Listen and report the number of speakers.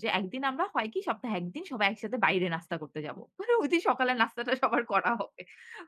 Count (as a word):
one